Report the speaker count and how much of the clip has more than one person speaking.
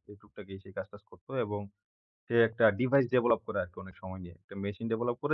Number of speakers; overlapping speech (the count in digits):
1, no overlap